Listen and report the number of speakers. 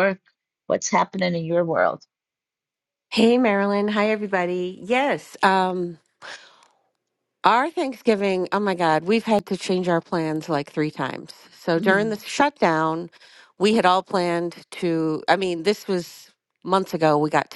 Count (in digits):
2